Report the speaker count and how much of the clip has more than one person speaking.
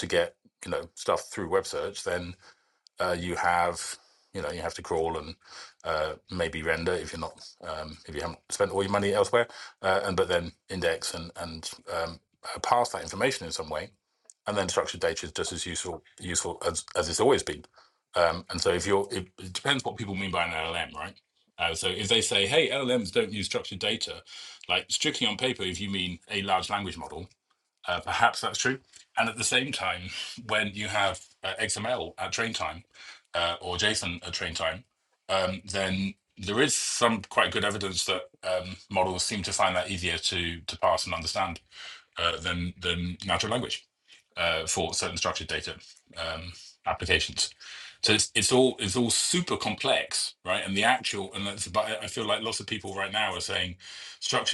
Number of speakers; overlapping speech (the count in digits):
1, no overlap